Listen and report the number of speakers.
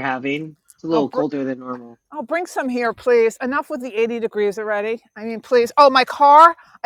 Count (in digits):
2